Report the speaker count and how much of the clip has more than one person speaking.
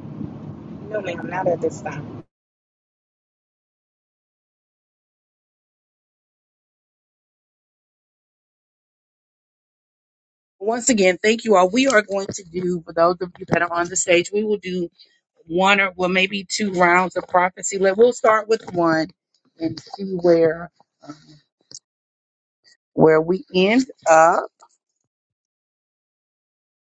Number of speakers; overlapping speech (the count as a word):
two, no overlap